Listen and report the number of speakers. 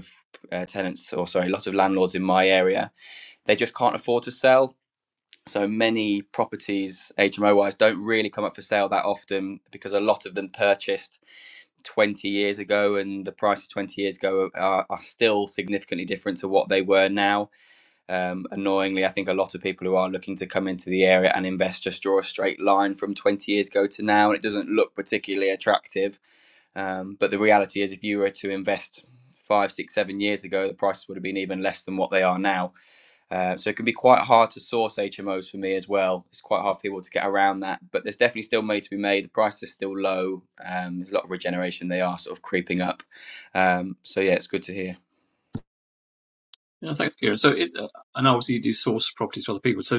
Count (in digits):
2